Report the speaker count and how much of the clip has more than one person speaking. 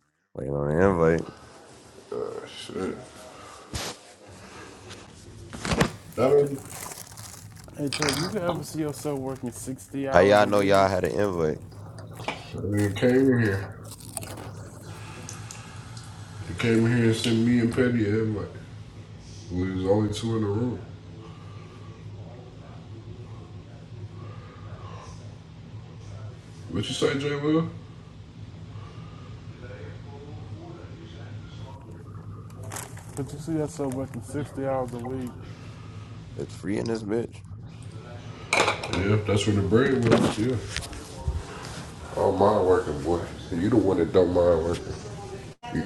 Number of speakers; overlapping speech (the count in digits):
3, about 2%